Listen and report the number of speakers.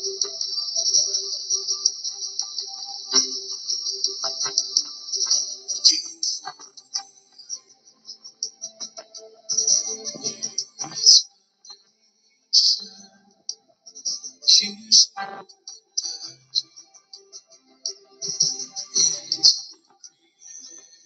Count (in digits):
0